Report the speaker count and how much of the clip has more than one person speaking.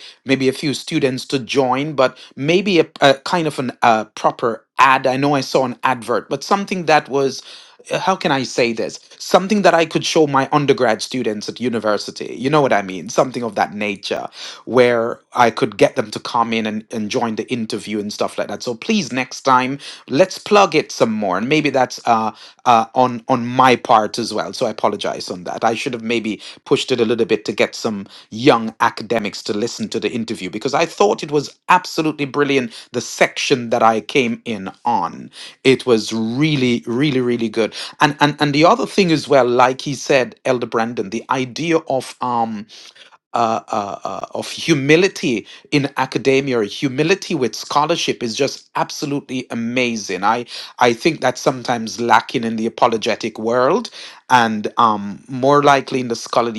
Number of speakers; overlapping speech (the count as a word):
one, no overlap